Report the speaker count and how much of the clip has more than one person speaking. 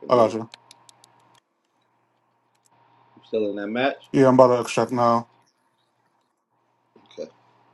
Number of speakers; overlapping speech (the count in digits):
2, about 3%